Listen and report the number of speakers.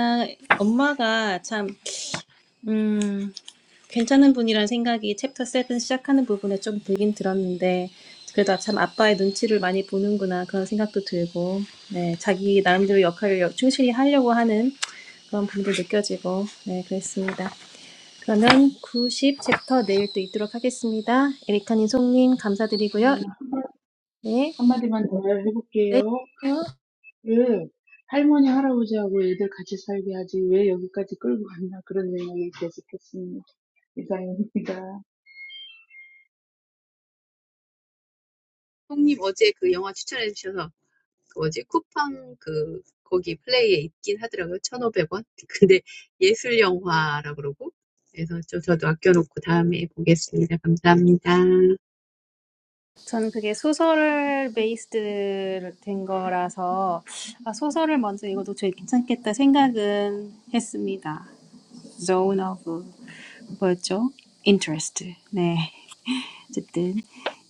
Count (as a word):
three